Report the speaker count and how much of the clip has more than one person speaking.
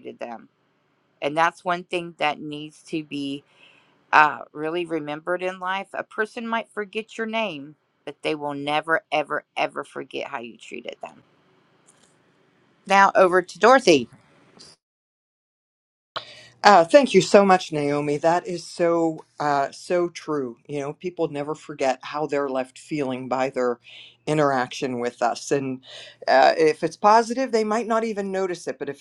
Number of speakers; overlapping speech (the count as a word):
two, no overlap